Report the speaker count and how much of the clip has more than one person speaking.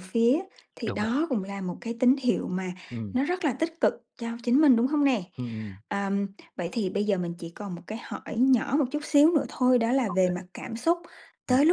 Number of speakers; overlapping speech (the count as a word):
two, about 5%